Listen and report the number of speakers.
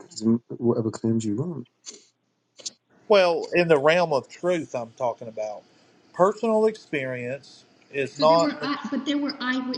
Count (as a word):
three